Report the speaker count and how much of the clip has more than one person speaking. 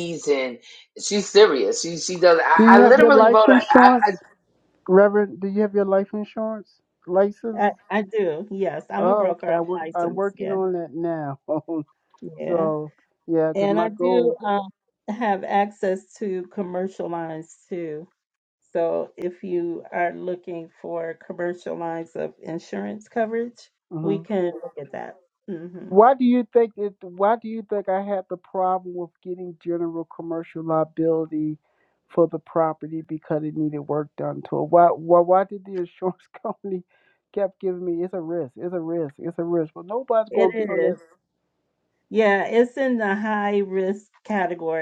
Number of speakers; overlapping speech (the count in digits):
3, about 11%